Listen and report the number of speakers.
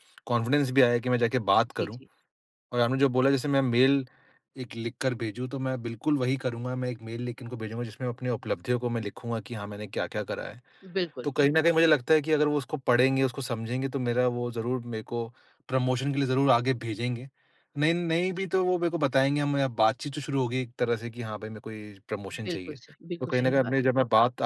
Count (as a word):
two